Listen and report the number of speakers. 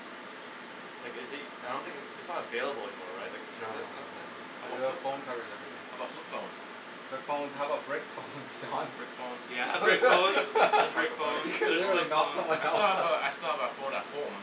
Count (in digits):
4